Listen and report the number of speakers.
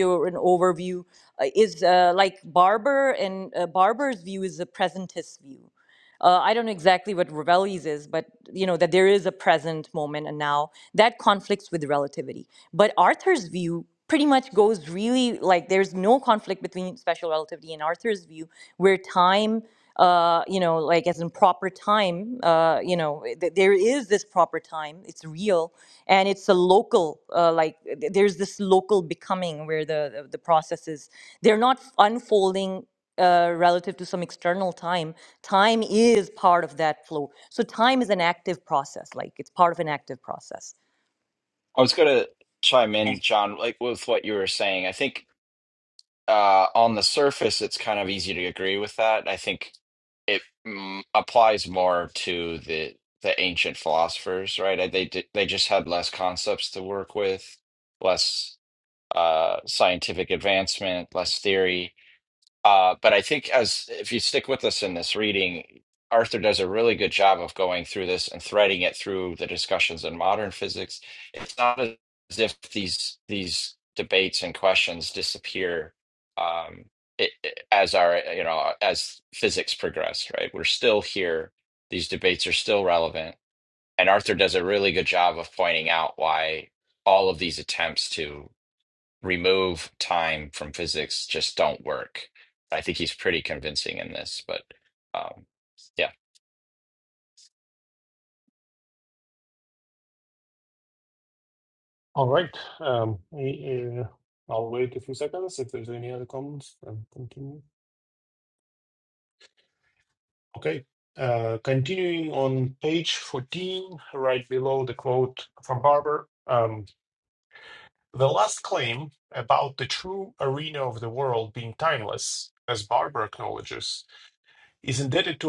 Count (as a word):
three